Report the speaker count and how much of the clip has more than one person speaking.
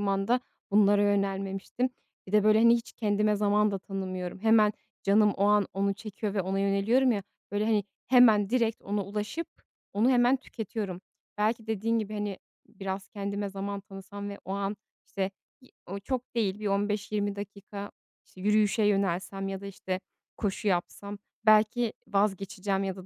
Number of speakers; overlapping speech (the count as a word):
one, no overlap